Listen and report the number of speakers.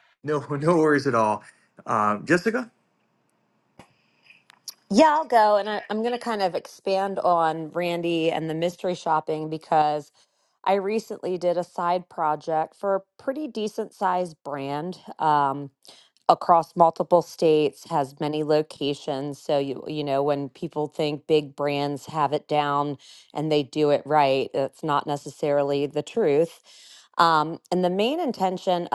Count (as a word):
two